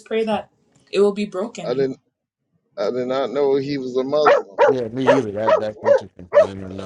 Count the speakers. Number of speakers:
3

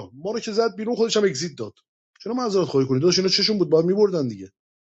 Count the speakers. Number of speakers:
1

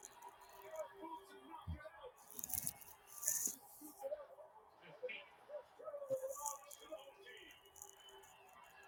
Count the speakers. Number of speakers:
0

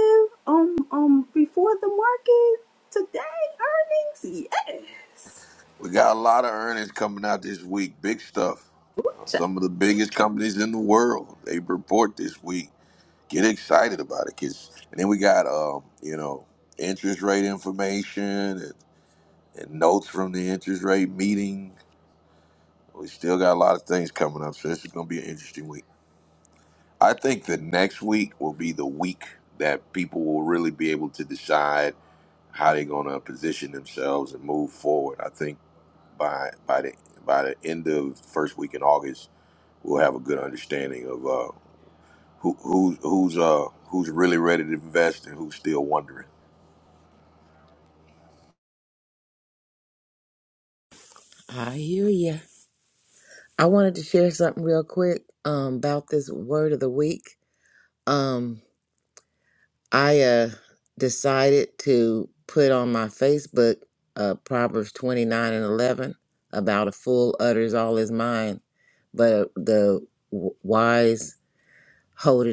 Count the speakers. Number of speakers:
3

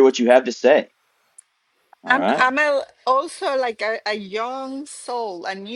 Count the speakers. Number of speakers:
2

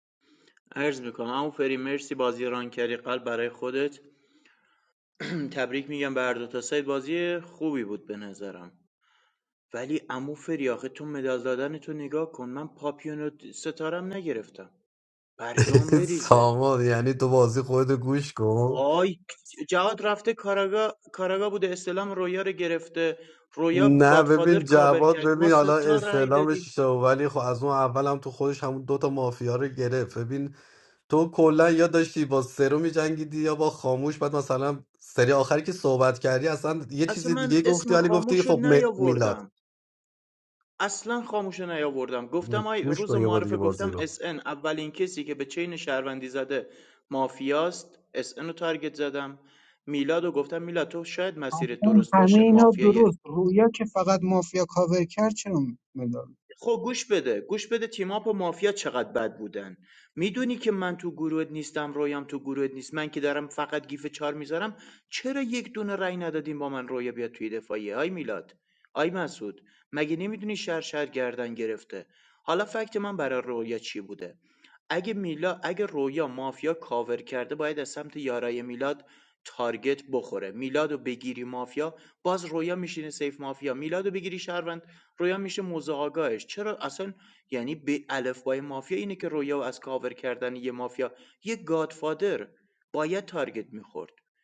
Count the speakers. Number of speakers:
3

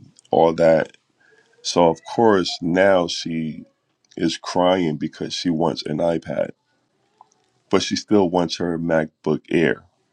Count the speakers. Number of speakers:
1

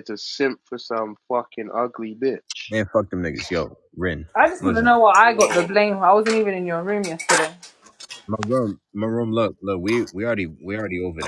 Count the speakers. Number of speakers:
3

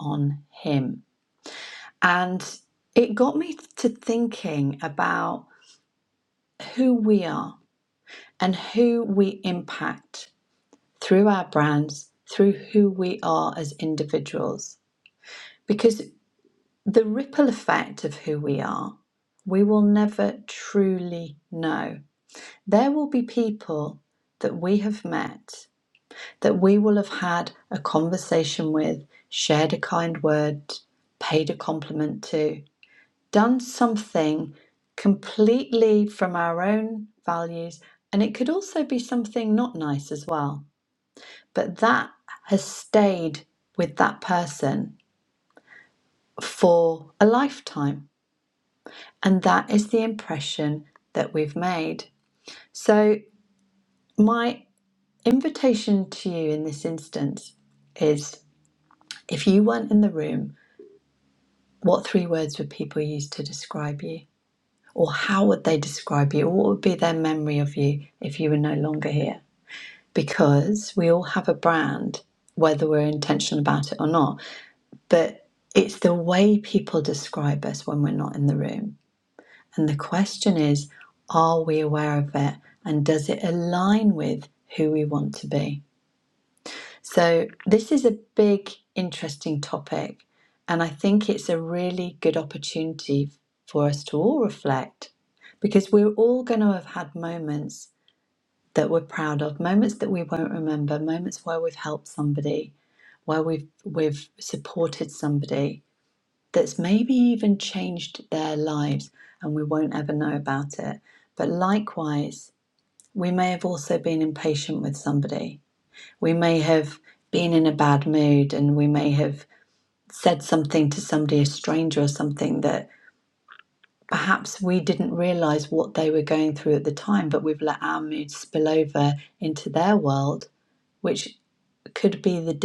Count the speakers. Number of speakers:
1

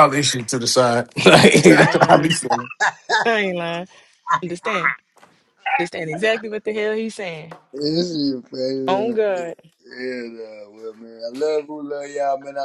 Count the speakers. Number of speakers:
3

